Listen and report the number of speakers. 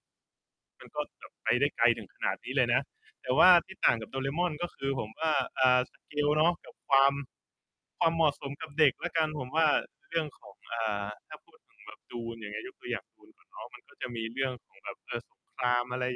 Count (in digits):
1